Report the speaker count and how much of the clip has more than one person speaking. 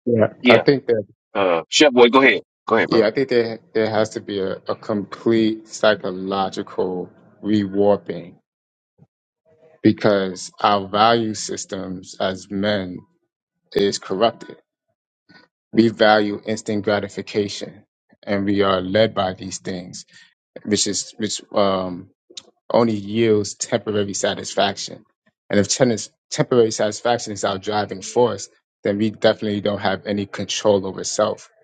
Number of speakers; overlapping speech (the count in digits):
2, about 1%